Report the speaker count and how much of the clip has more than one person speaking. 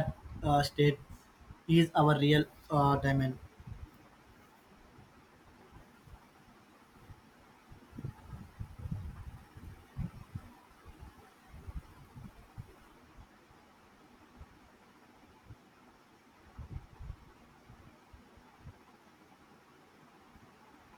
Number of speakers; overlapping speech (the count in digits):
1, no overlap